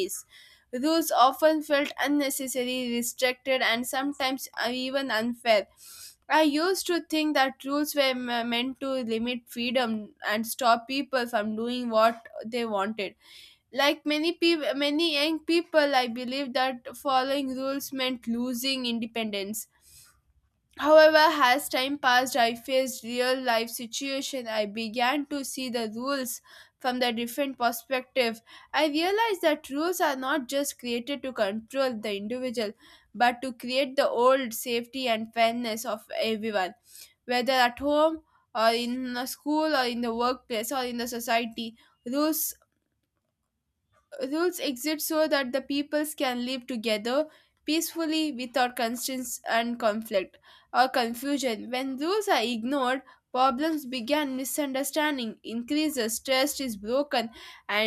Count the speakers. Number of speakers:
1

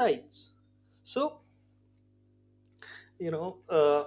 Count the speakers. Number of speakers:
1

